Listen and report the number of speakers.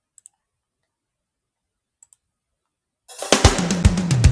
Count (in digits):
0